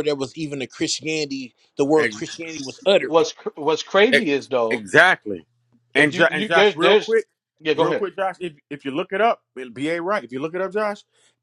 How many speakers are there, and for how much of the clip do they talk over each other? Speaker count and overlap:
3, about 15%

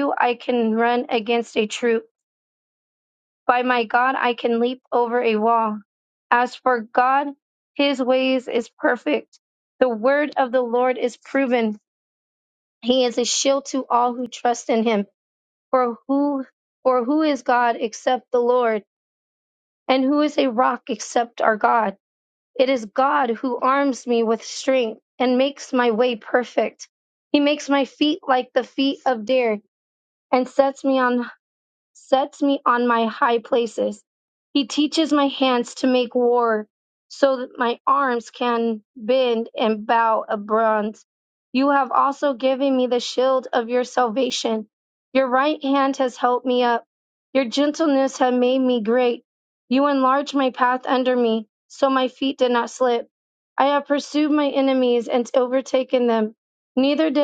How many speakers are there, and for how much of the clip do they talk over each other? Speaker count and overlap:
1, no overlap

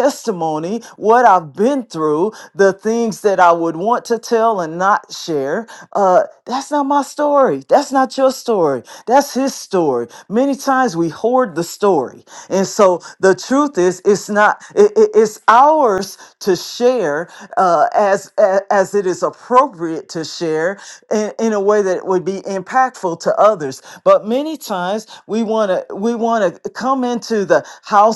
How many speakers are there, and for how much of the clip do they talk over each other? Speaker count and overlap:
1, no overlap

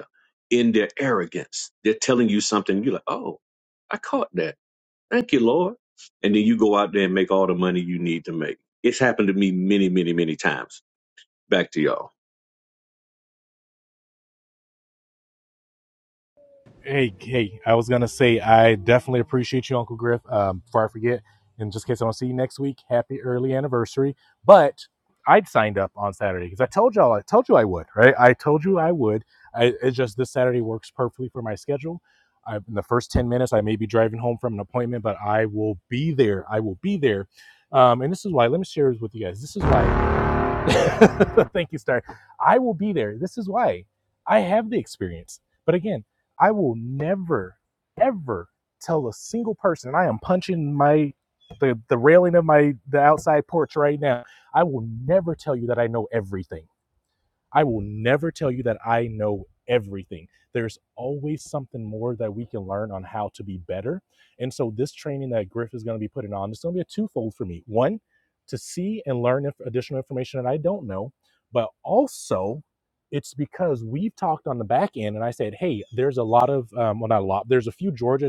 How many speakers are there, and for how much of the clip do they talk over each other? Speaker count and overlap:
2, no overlap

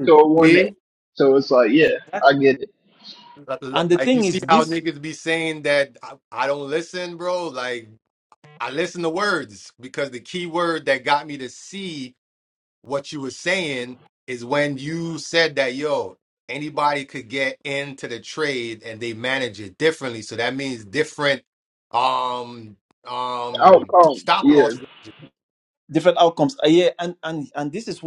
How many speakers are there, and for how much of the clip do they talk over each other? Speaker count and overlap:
3, about 9%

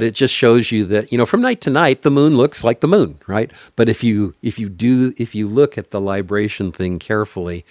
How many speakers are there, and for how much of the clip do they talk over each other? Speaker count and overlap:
1, no overlap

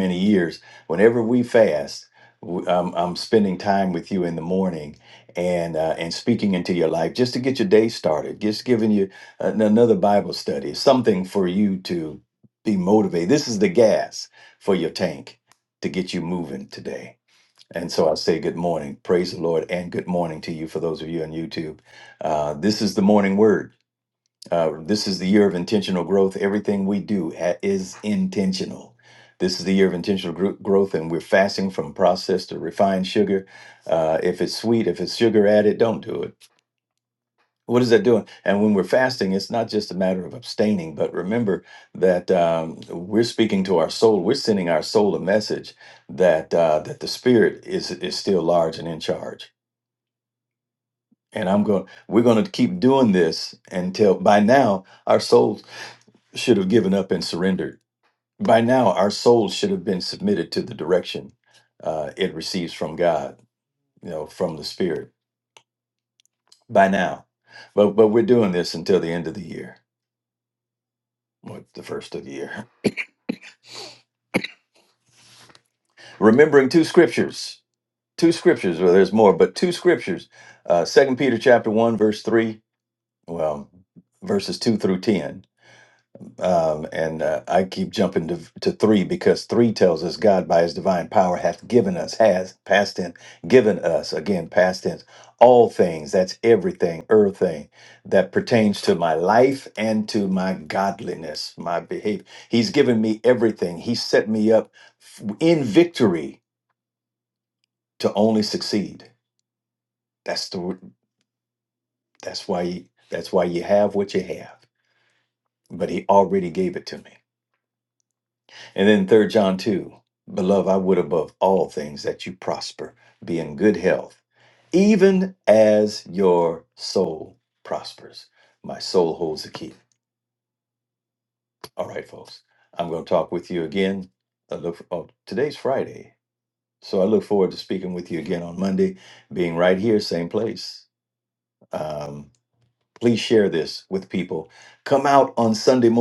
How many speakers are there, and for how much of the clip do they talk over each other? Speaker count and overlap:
1, no overlap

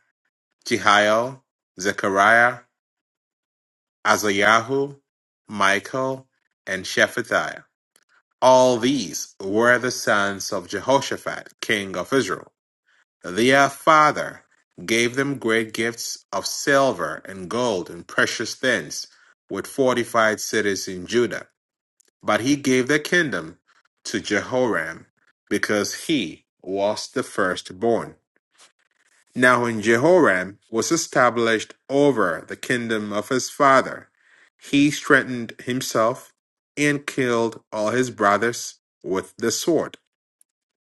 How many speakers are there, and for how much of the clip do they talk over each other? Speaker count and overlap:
1, no overlap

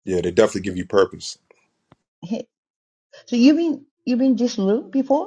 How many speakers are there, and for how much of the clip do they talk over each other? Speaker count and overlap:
2, no overlap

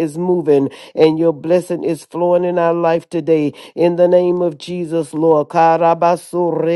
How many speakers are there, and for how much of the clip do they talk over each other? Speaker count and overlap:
1, no overlap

